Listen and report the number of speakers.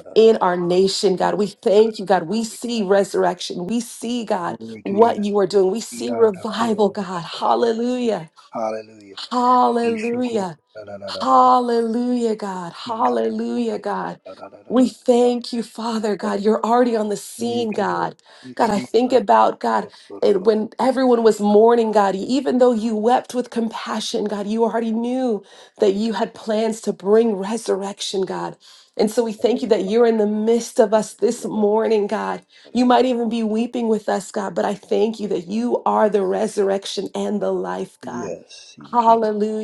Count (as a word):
two